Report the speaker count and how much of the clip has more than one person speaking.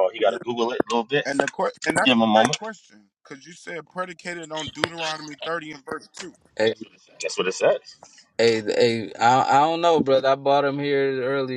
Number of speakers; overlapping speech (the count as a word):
three, about 6%